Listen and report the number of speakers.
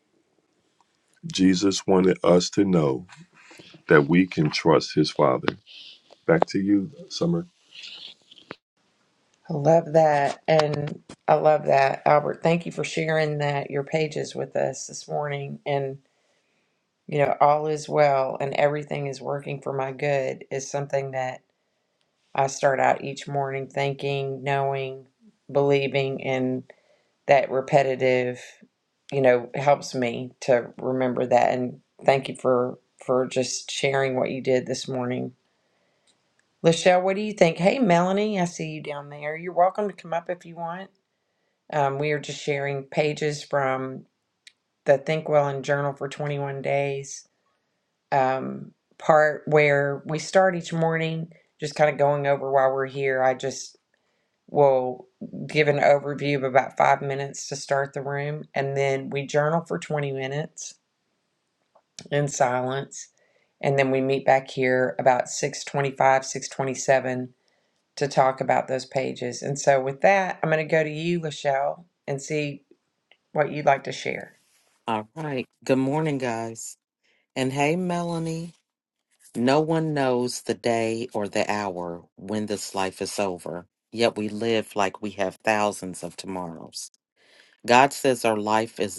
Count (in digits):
3